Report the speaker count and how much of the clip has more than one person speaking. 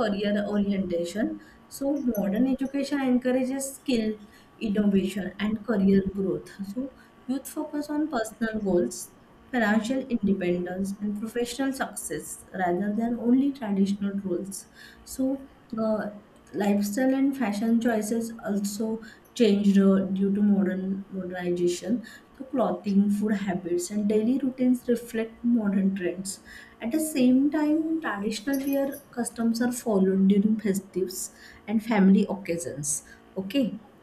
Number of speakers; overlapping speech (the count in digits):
1, no overlap